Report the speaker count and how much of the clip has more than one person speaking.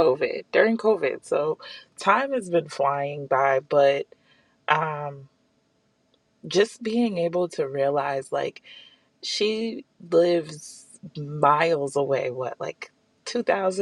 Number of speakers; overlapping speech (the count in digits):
1, no overlap